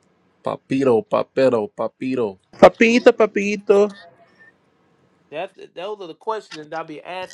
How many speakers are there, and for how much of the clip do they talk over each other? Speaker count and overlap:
3, about 5%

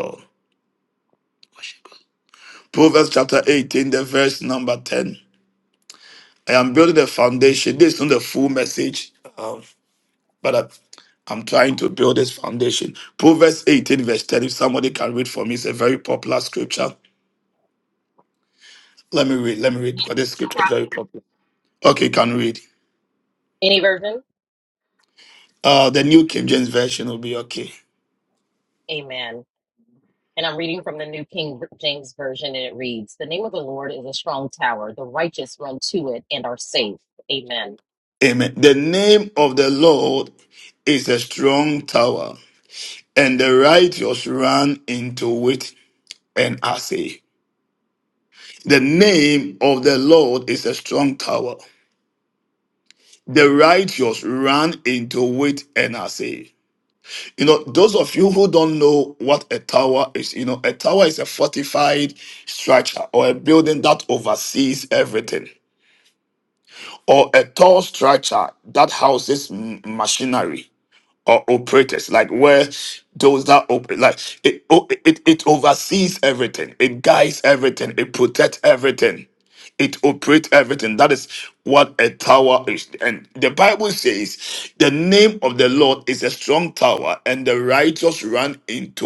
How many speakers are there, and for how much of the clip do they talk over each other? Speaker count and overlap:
2, no overlap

